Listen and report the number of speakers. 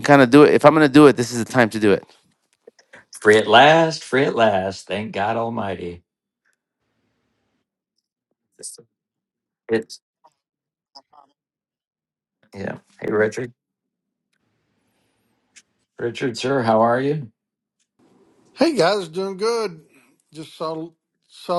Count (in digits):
3